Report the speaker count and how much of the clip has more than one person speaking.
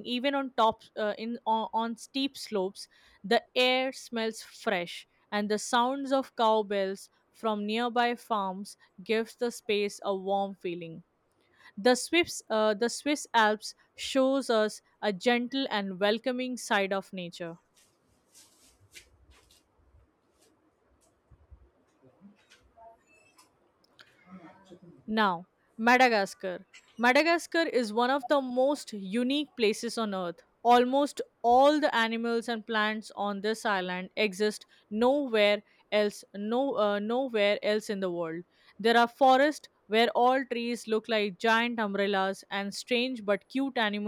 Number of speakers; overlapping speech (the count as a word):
one, no overlap